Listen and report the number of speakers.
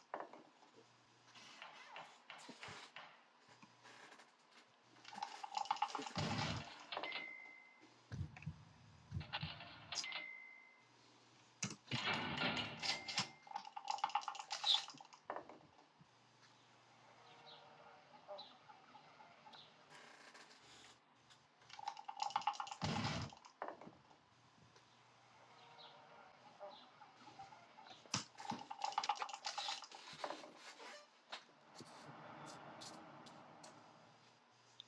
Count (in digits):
0